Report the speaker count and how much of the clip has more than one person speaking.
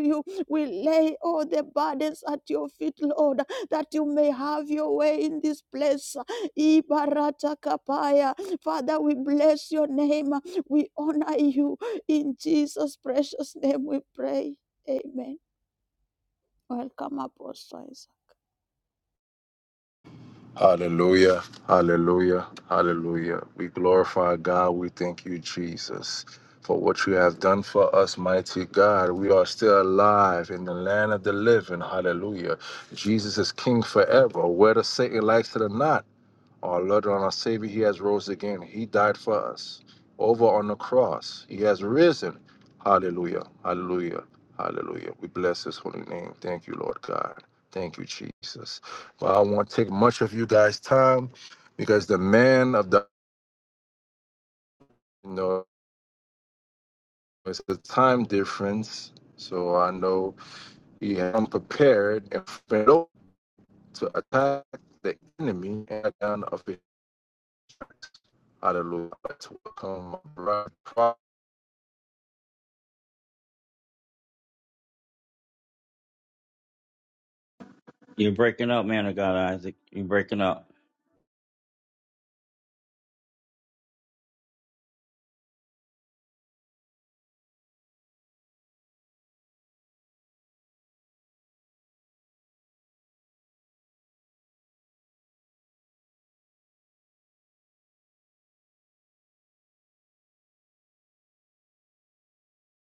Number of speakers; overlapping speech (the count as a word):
three, no overlap